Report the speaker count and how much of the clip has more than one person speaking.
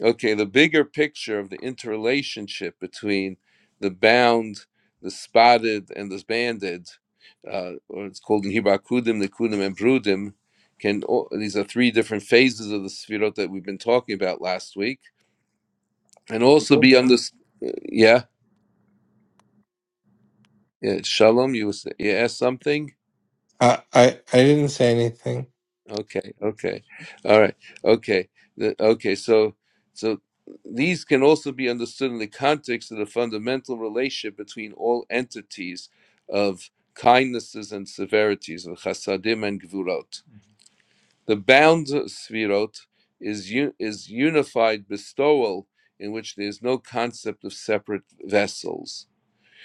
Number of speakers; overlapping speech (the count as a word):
two, no overlap